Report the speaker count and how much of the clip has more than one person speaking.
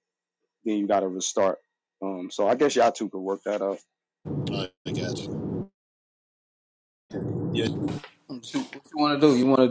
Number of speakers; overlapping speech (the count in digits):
3, no overlap